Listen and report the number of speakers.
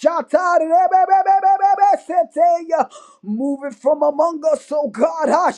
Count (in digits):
1